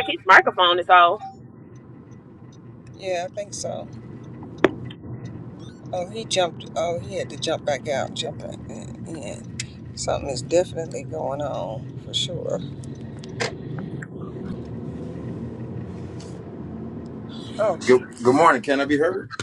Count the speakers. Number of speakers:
3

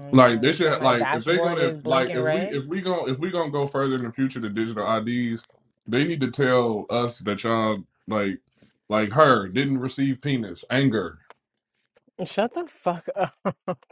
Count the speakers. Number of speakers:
2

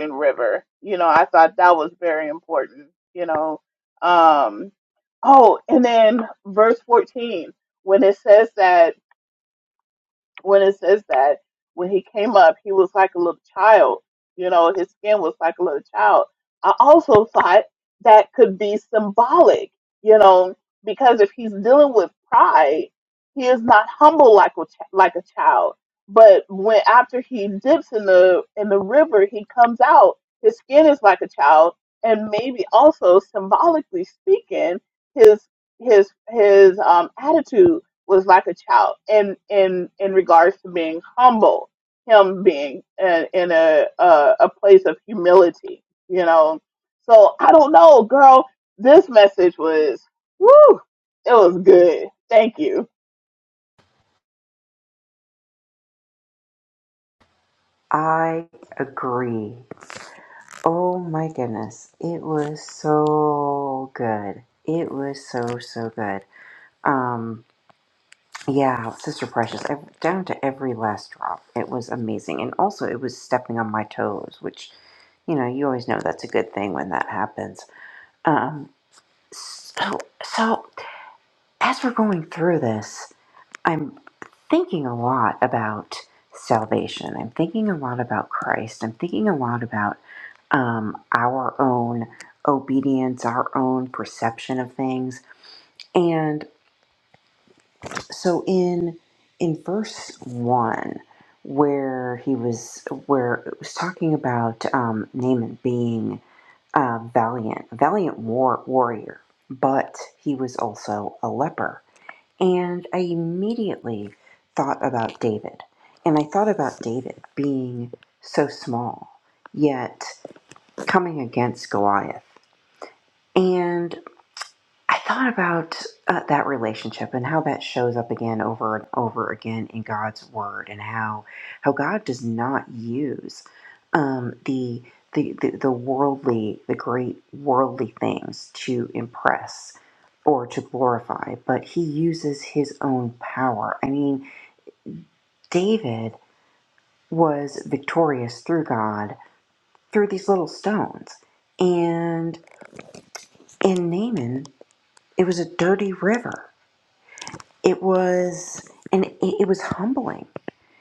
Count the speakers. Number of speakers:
2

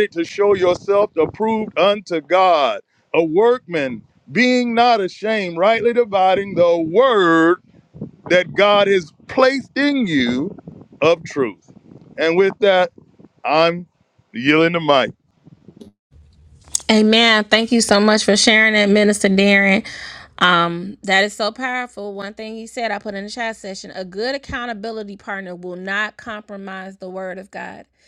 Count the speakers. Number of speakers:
2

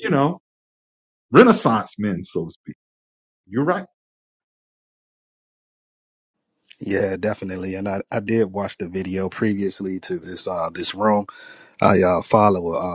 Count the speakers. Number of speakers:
2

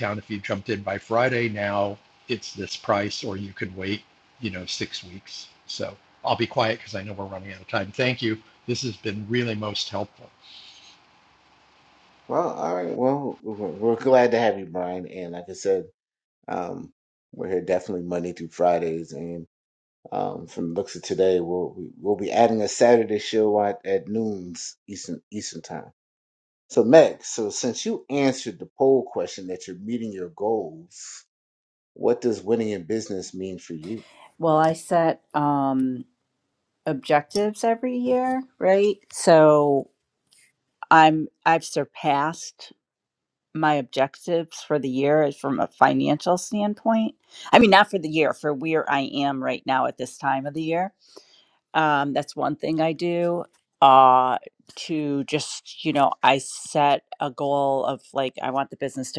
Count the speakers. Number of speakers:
3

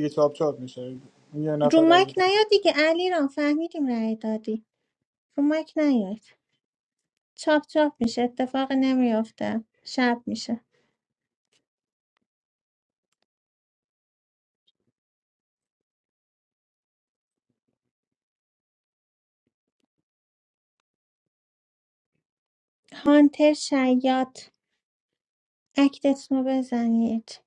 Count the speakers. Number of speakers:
2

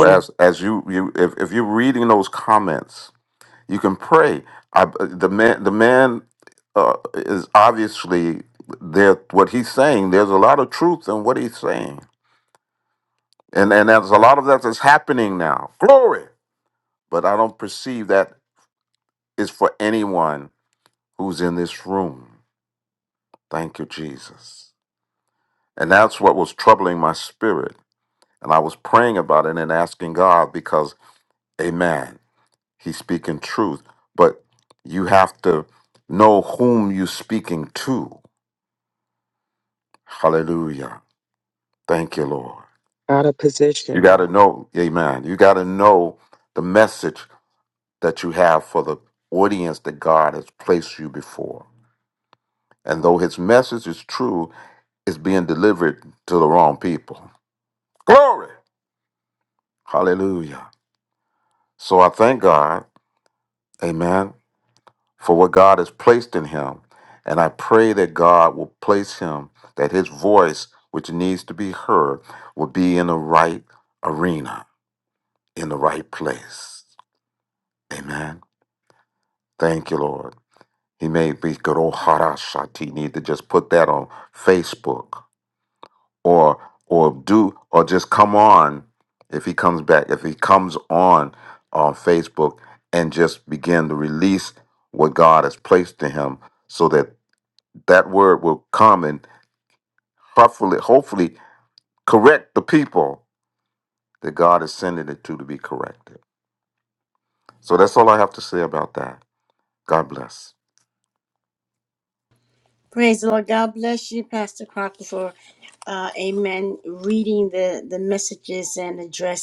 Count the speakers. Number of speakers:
3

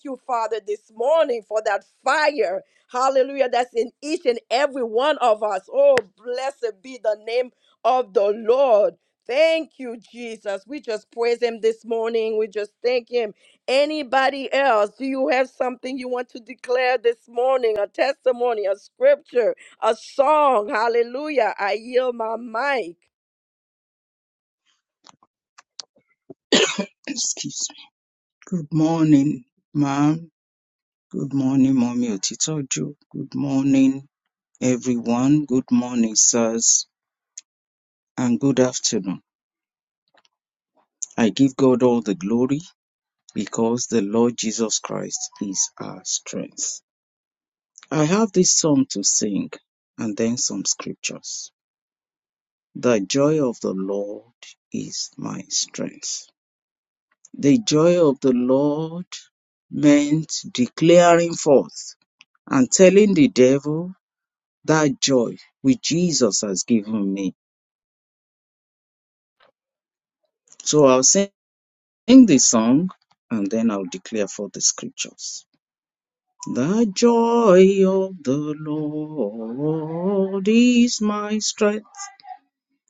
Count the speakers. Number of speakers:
2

